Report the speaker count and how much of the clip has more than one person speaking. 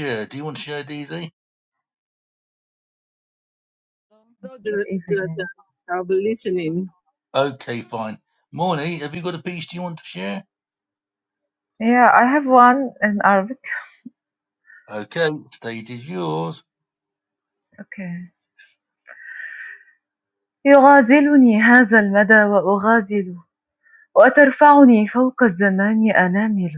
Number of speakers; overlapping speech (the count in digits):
3, about 1%